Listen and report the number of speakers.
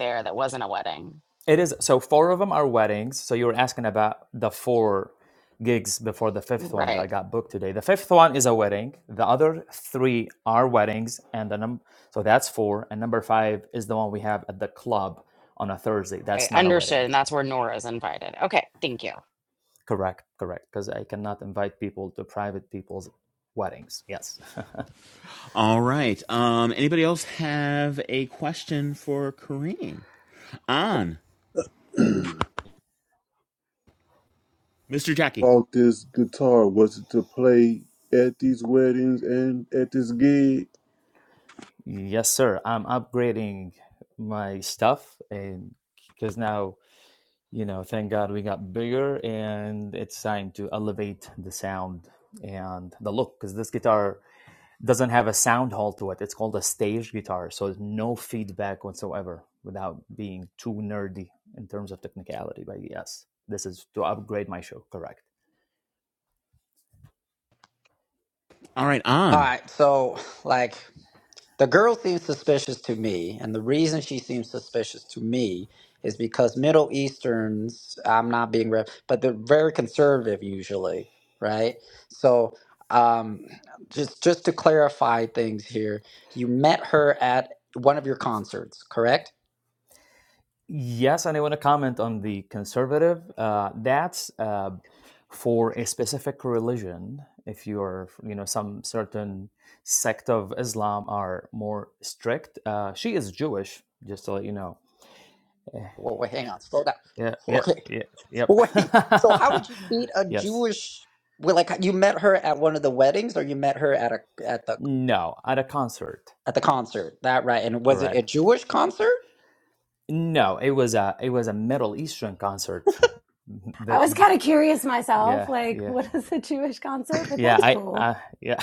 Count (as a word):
six